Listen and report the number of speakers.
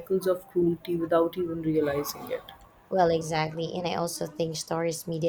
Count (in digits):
2